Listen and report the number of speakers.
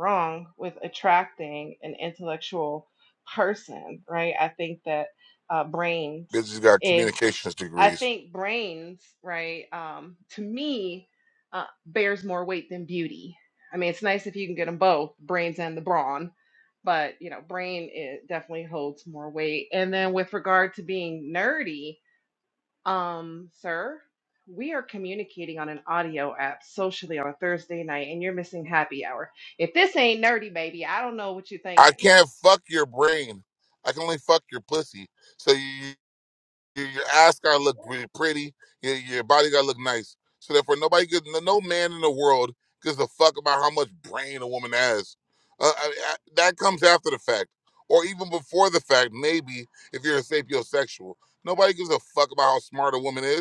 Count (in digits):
2